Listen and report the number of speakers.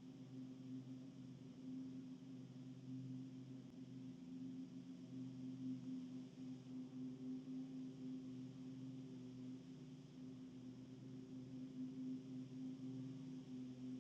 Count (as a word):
zero